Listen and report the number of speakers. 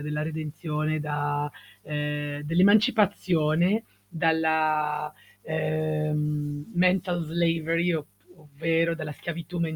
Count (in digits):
1